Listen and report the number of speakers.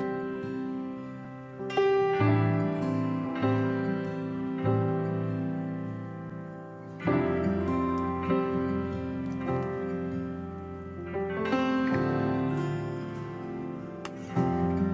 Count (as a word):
zero